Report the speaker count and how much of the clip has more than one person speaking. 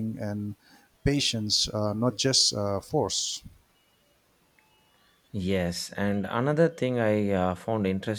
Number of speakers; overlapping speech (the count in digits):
2, no overlap